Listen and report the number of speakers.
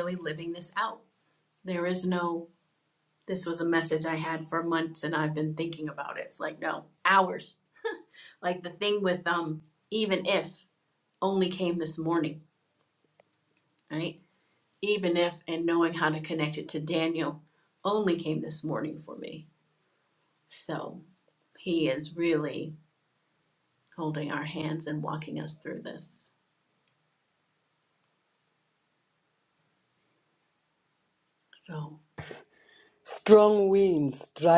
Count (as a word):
two